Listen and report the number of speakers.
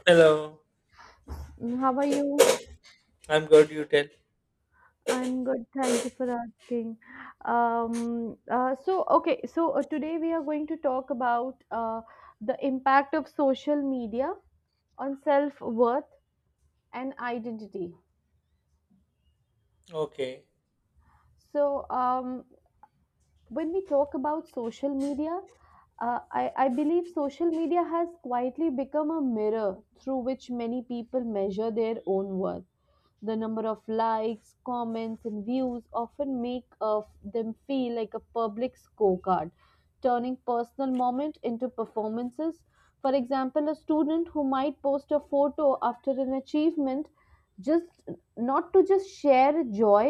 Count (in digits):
2